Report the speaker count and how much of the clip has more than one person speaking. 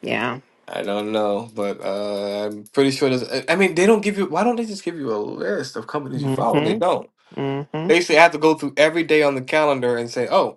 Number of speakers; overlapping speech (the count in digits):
2, about 6%